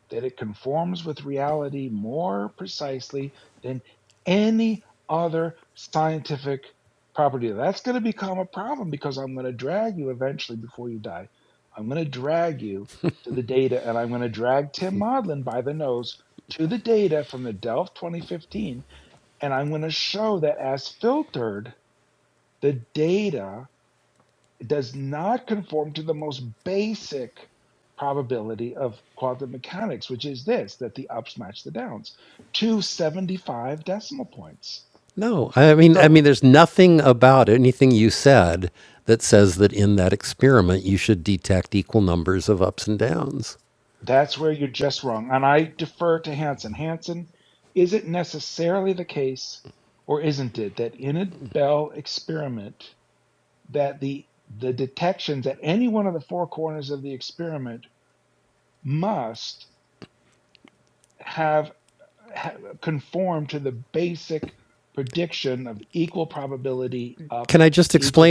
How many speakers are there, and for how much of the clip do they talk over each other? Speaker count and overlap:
two, about 1%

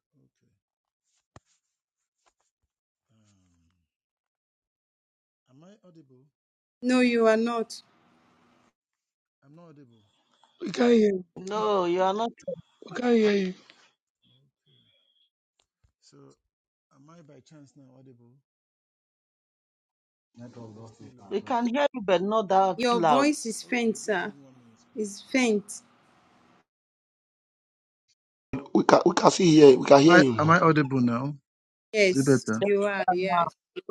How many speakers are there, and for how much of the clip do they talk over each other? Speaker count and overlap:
five, about 4%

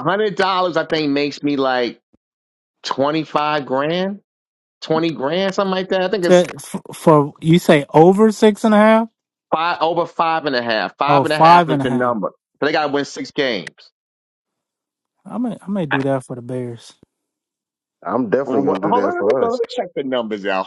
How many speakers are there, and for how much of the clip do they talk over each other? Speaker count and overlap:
three, about 11%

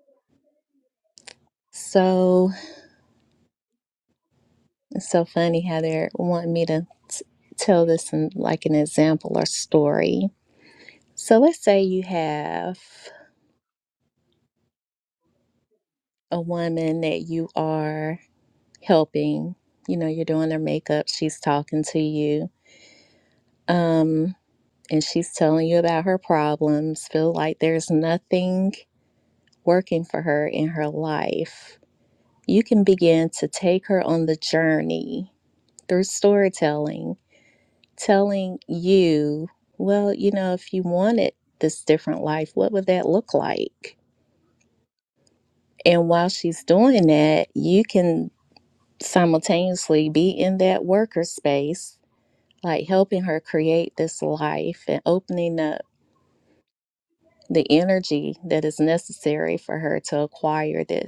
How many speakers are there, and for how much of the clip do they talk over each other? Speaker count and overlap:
one, no overlap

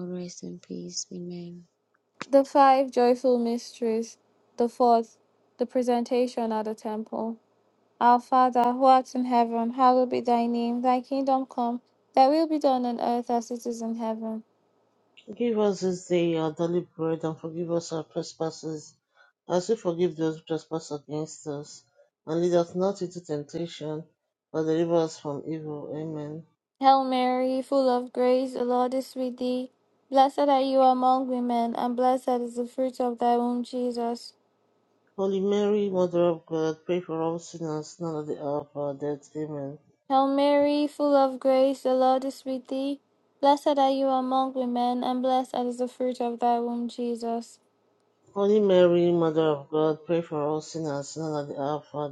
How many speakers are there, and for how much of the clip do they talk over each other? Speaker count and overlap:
three, no overlap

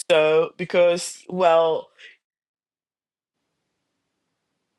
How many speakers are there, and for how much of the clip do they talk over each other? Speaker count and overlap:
one, no overlap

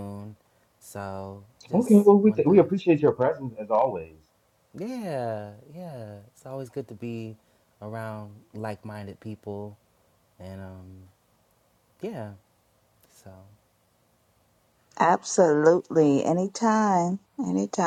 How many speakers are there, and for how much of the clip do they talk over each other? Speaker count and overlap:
three, about 3%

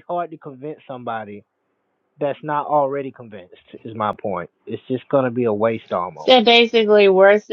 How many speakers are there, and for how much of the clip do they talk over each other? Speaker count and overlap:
two, about 1%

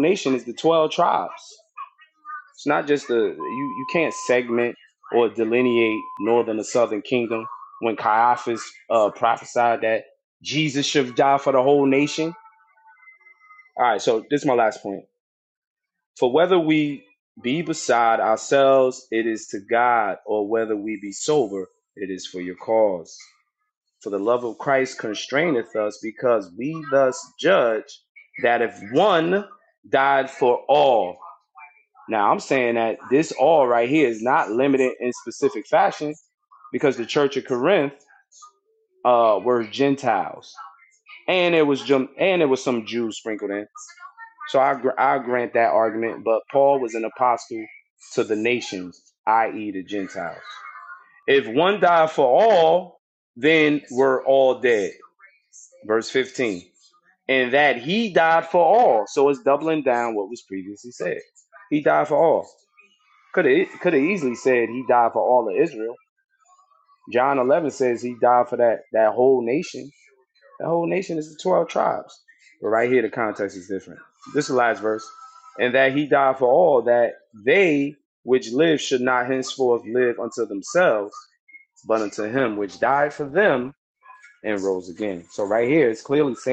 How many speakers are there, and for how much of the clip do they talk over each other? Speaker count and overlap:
one, no overlap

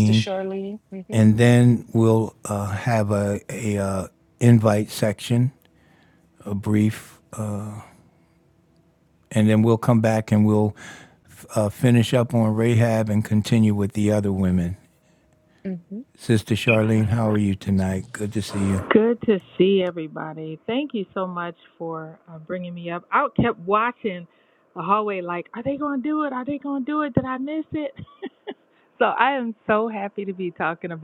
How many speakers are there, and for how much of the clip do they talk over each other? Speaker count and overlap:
three, about 1%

